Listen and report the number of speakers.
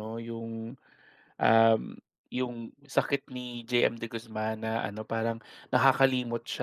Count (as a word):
one